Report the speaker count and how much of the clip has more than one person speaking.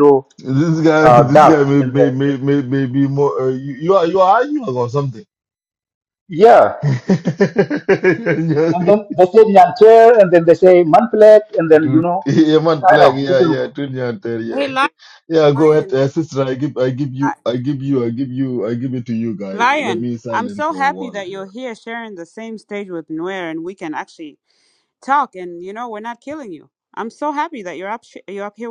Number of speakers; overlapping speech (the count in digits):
3, about 17%